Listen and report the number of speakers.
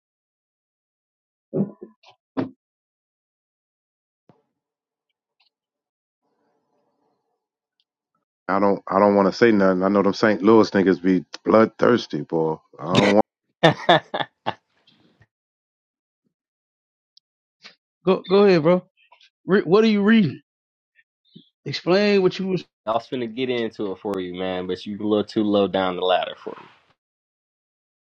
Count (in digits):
3